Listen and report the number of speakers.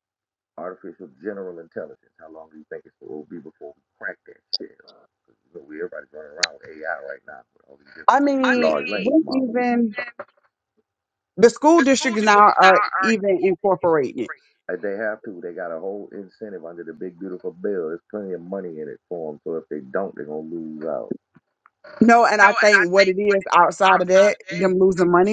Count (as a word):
two